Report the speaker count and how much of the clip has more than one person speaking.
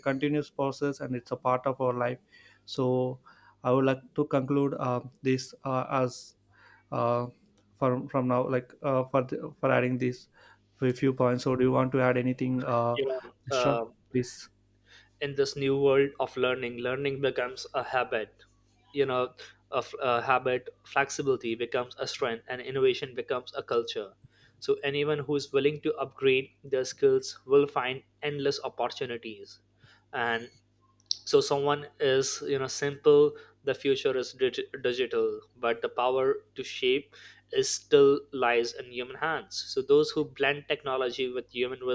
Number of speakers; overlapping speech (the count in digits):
2, about 1%